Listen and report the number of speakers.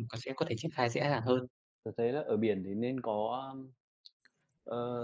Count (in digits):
2